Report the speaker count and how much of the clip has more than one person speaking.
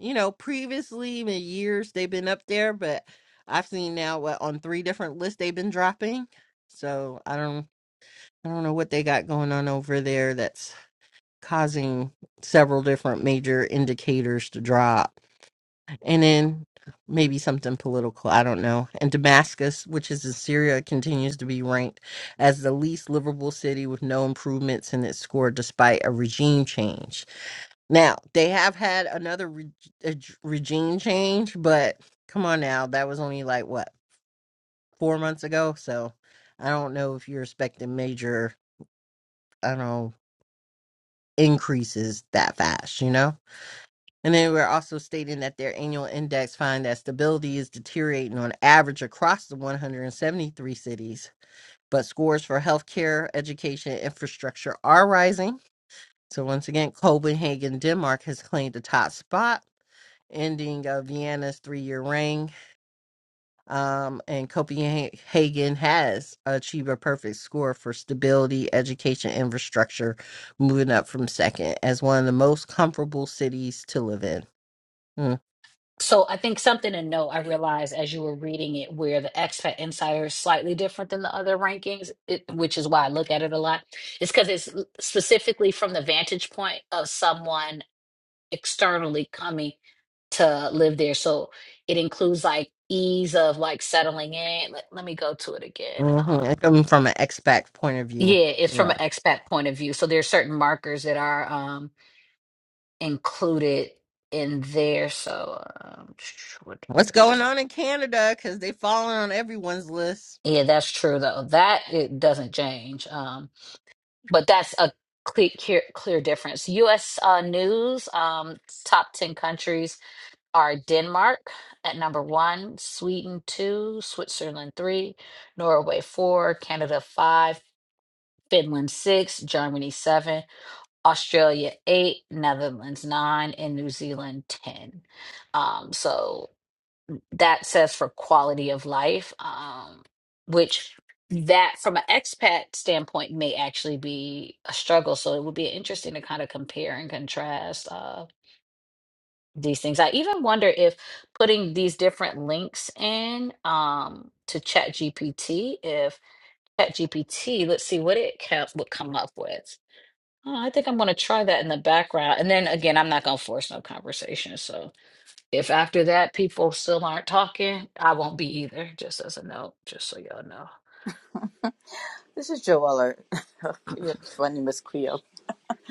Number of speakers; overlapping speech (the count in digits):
3, about 1%